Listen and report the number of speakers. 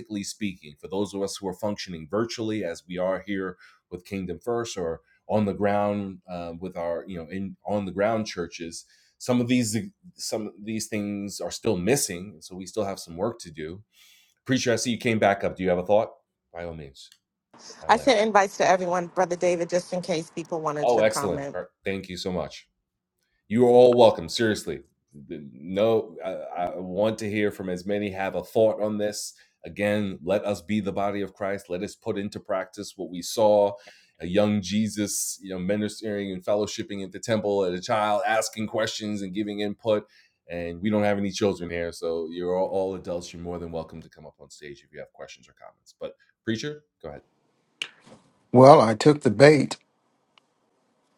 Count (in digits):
3